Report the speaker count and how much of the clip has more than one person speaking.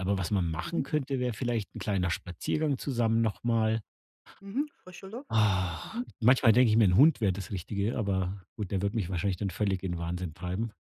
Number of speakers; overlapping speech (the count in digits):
2, about 2%